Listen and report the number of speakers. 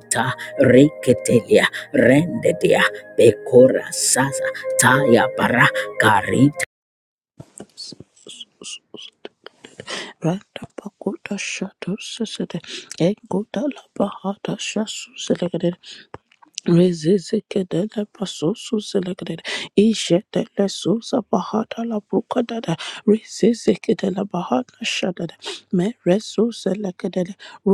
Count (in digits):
2